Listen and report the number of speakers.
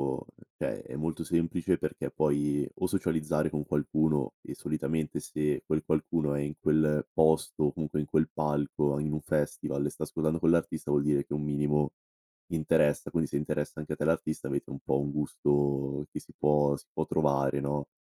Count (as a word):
one